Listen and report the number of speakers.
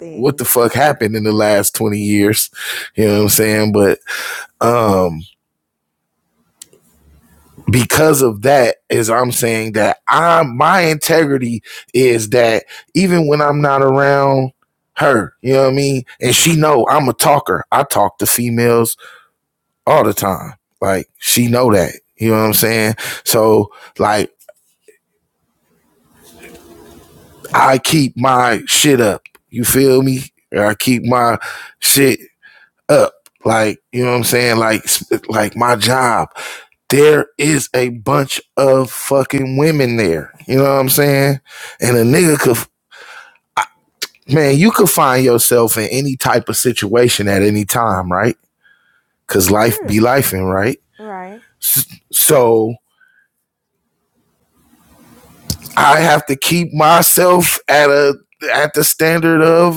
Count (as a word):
two